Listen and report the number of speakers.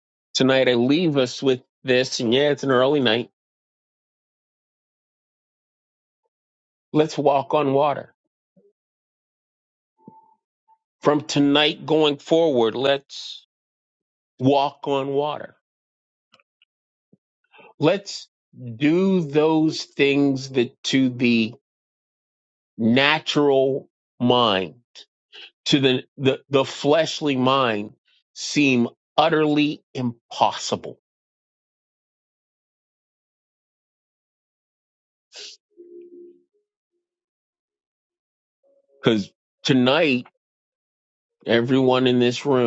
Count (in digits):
1